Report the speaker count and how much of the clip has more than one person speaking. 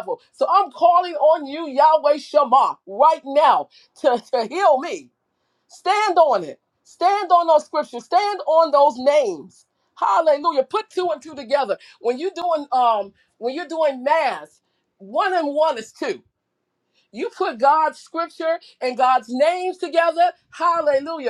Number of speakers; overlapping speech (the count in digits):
1, no overlap